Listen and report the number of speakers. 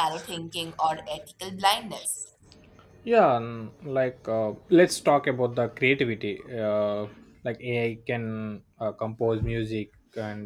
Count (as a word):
two